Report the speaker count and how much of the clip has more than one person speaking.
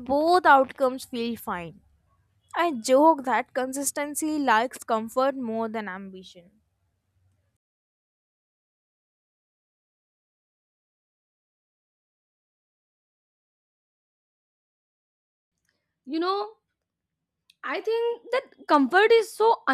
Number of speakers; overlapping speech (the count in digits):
2, no overlap